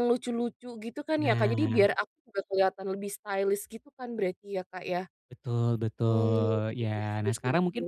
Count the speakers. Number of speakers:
2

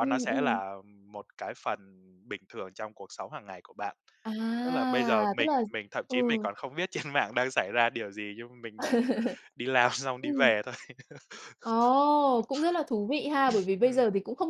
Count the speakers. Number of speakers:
2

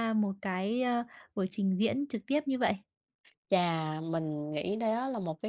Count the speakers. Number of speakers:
2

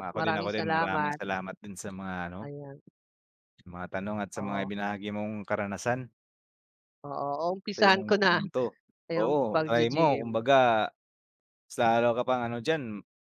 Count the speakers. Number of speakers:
2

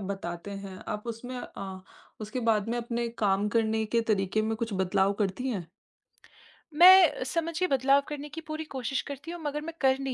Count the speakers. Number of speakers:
2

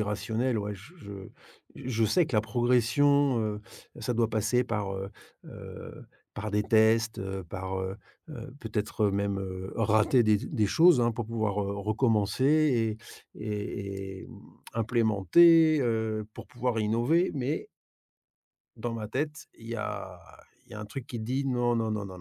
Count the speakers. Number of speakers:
1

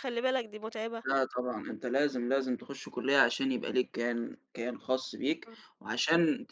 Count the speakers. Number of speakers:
2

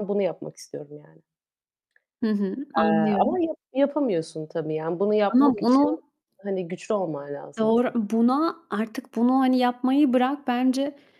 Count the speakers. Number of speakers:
2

